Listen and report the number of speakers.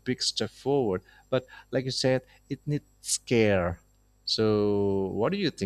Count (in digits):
1